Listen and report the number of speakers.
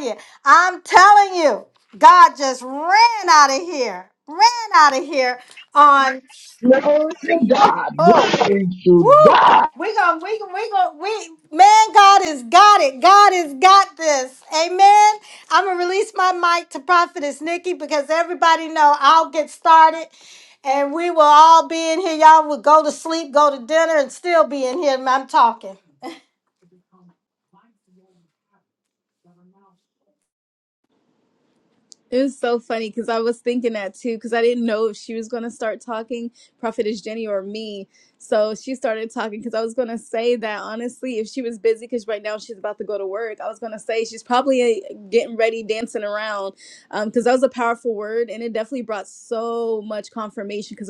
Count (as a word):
three